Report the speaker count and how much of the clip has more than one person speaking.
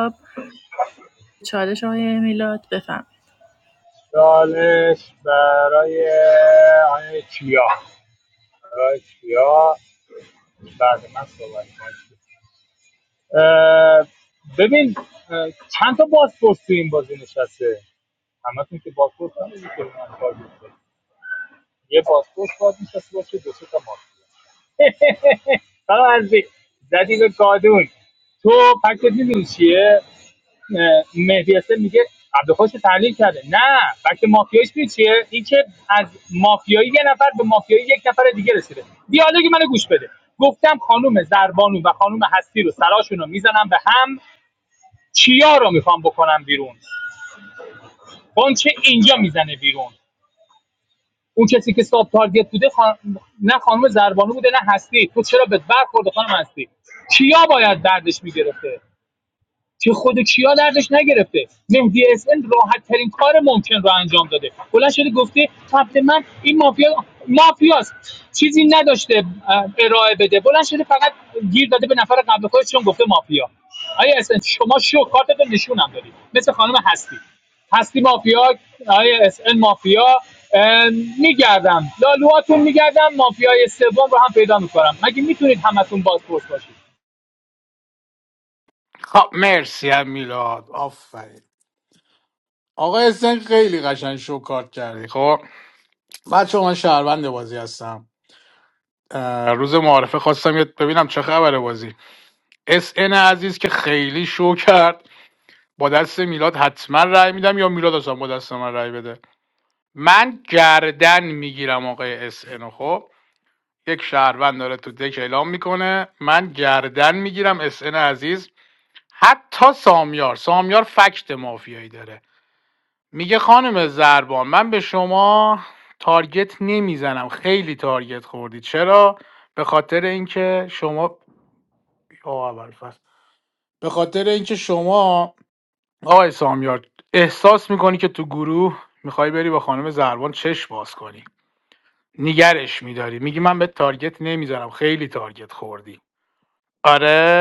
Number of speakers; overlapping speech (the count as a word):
three, no overlap